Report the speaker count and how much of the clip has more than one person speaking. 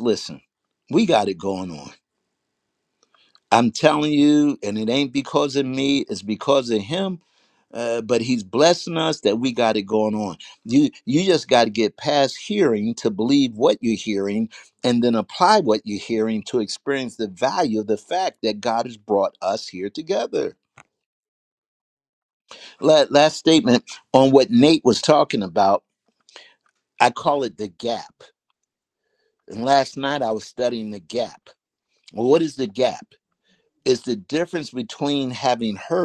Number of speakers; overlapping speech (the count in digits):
1, no overlap